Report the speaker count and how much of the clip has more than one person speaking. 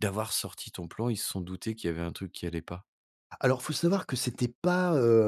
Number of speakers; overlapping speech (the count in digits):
2, no overlap